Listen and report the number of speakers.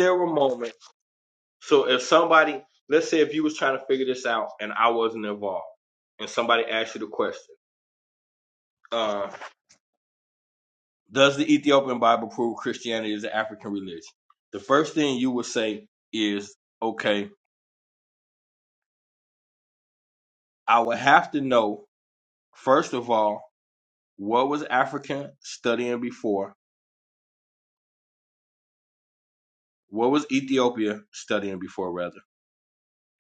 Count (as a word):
one